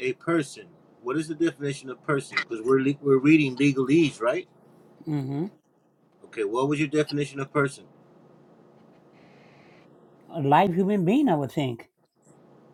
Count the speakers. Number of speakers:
2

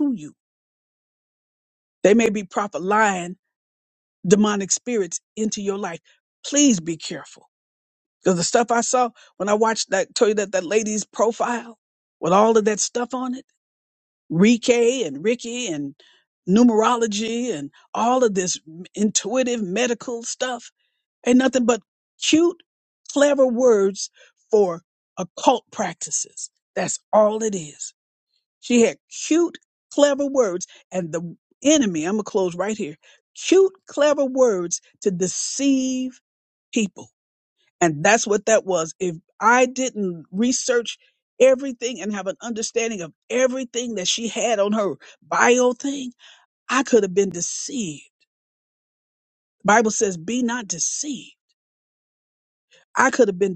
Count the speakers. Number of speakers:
1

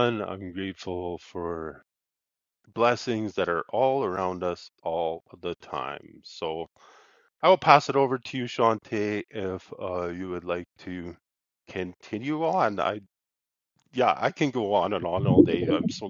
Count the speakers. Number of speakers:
1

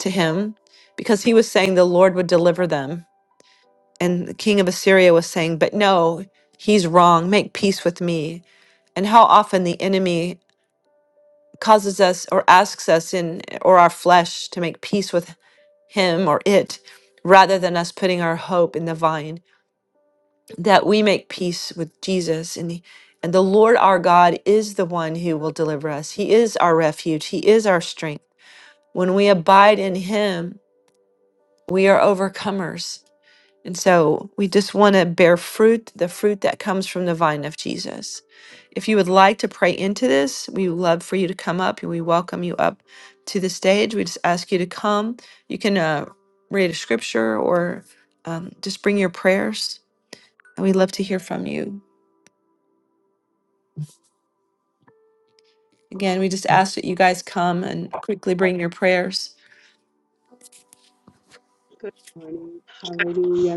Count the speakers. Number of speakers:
2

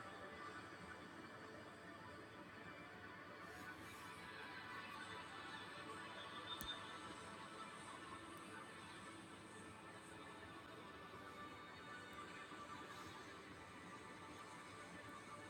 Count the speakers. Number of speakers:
0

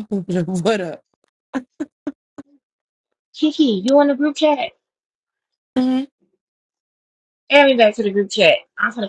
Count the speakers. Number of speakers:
2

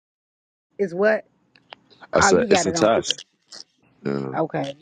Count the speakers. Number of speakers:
2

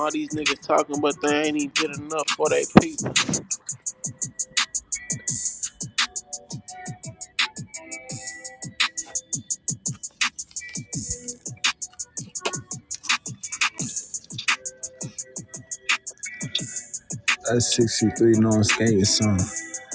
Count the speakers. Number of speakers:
2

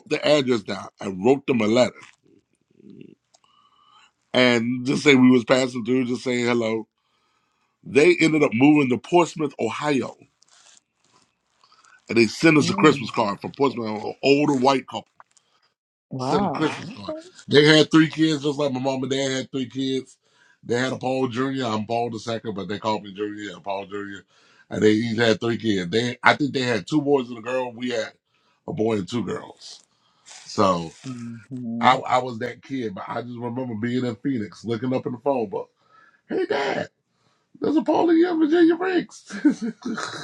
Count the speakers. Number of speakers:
2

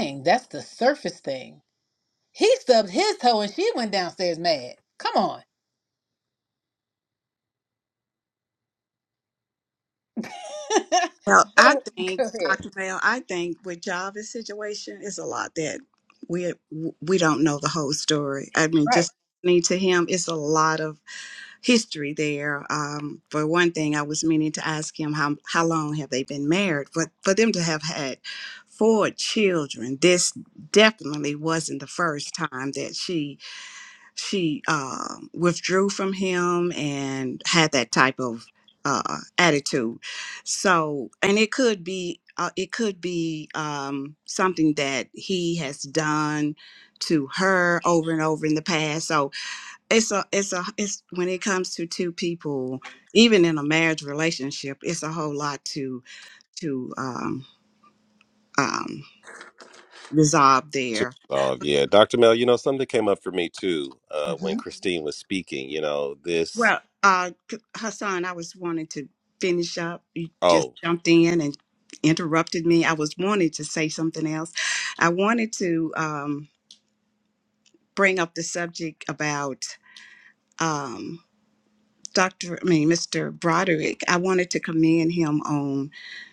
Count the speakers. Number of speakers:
3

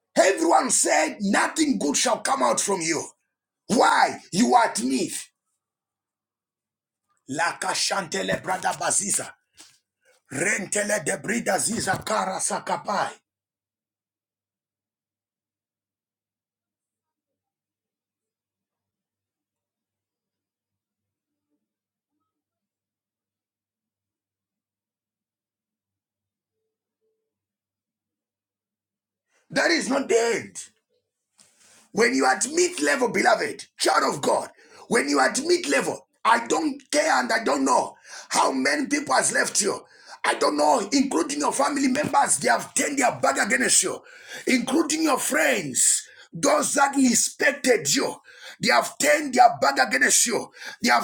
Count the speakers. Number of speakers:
1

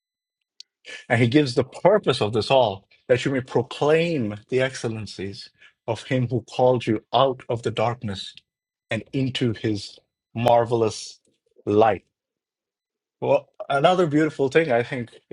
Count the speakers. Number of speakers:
1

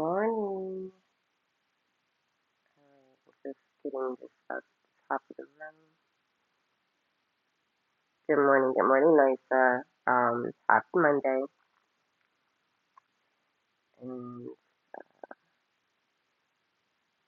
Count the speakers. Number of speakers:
1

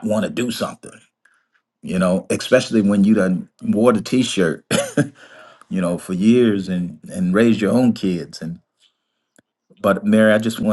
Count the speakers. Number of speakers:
1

